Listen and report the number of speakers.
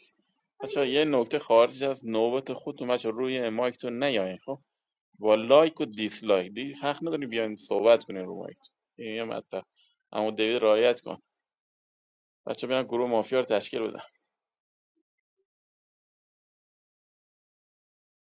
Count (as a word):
one